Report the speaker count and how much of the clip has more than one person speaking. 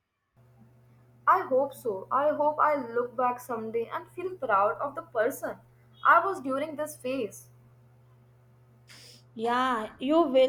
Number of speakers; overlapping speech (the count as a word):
two, no overlap